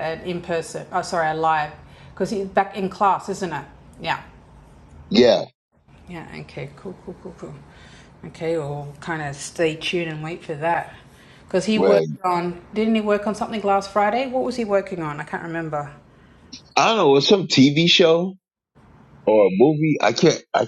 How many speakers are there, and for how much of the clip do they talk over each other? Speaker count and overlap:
two, about 2%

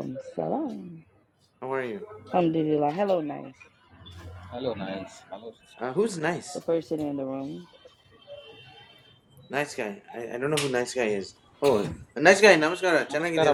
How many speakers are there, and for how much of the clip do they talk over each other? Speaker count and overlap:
three, about 3%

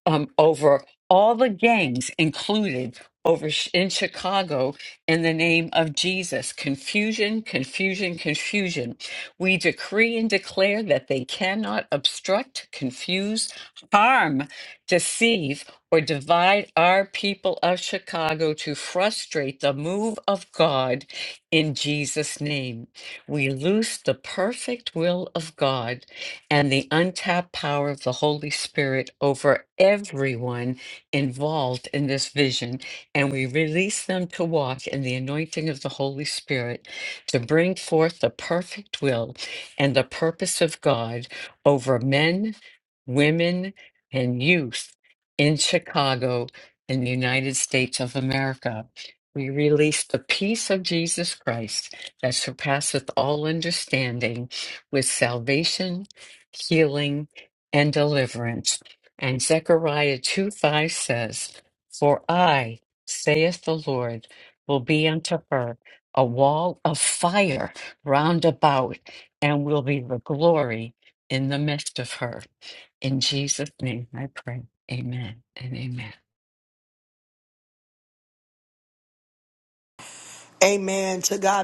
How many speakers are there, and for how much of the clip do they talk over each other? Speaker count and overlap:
two, no overlap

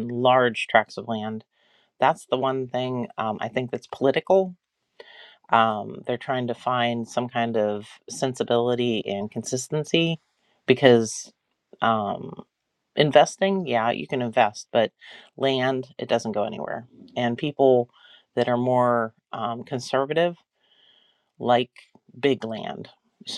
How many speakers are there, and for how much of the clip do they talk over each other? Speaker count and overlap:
one, no overlap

